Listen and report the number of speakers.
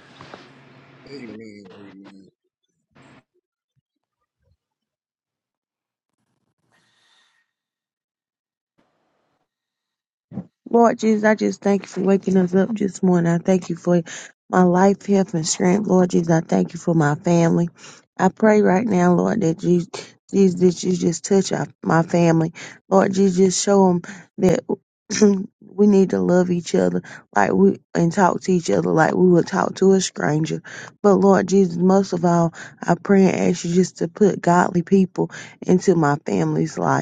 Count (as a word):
two